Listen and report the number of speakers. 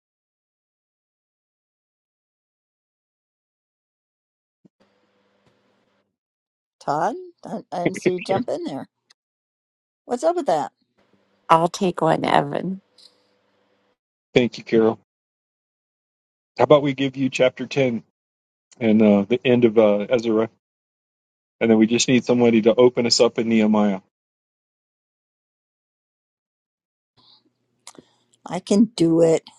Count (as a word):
three